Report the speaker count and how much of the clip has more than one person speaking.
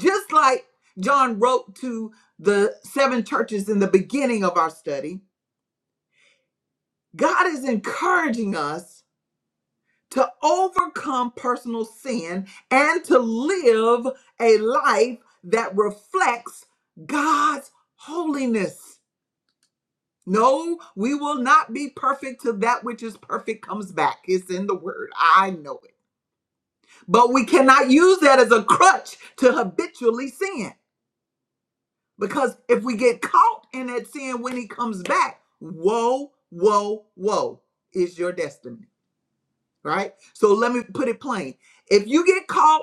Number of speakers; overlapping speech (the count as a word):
one, no overlap